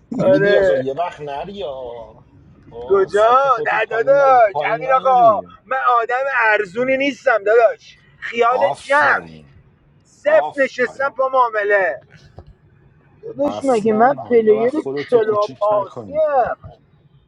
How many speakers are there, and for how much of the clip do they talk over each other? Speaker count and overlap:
2, about 43%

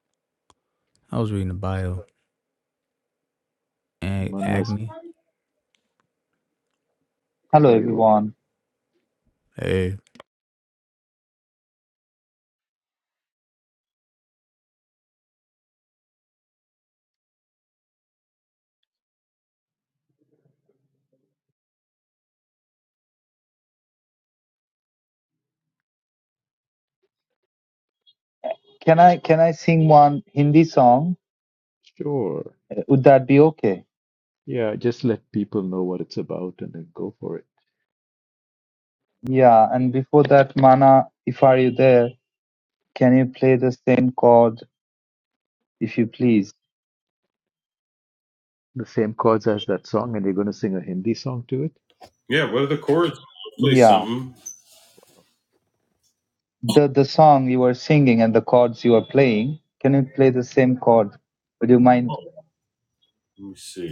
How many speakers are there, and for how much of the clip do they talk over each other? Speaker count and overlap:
4, about 2%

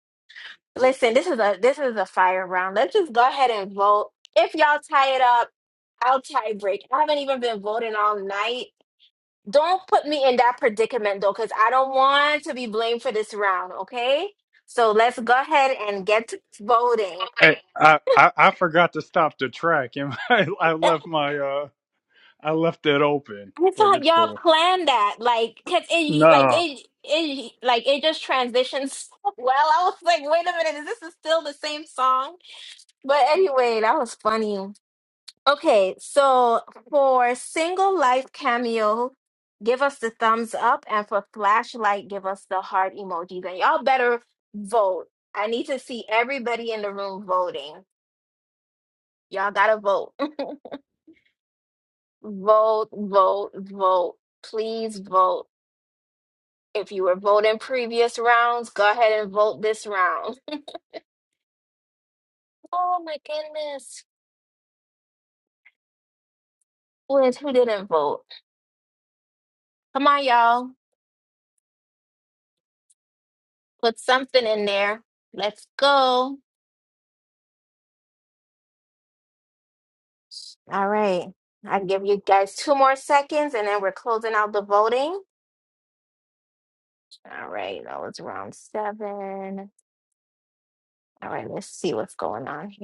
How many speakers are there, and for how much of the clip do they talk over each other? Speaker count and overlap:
2, about 1%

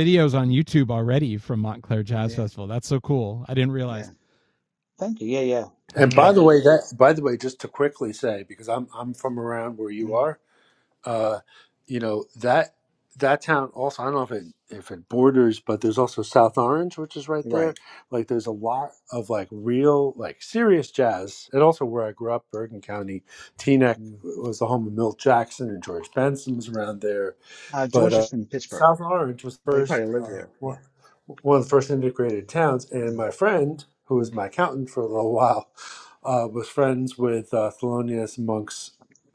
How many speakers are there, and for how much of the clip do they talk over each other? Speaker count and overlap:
3, about 8%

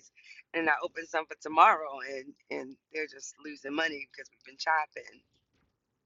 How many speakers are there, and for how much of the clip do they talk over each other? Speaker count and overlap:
1, no overlap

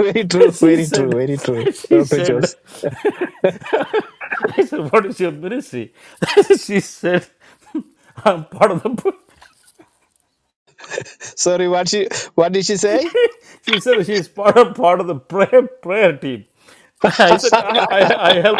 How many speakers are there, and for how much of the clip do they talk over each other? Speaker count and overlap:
2, about 7%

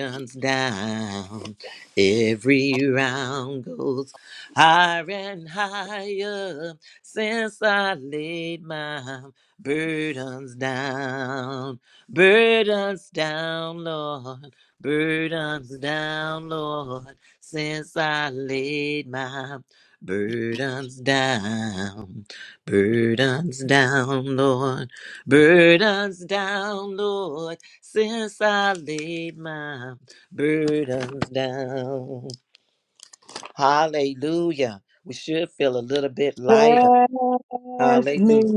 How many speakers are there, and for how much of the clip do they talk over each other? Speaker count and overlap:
2, about 2%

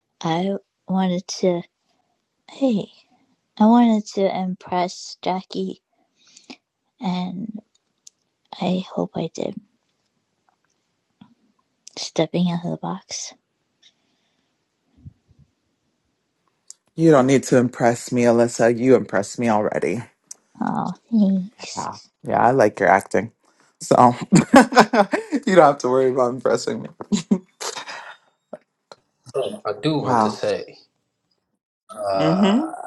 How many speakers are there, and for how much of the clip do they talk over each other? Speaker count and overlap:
3, about 3%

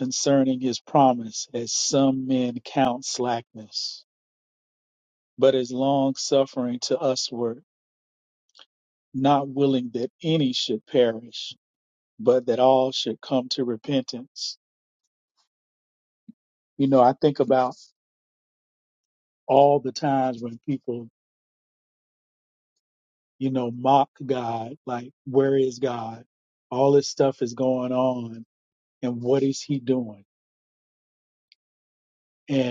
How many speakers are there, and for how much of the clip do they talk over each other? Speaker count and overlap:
1, no overlap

